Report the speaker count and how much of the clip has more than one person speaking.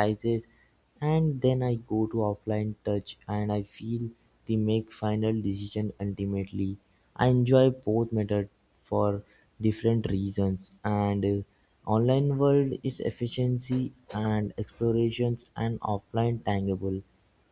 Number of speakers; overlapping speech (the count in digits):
1, no overlap